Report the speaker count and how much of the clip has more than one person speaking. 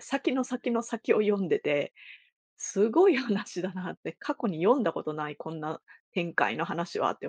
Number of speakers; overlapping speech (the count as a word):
one, no overlap